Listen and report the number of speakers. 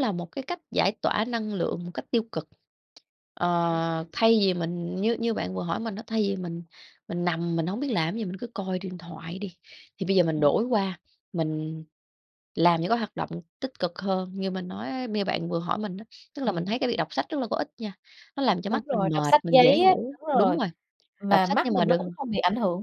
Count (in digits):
2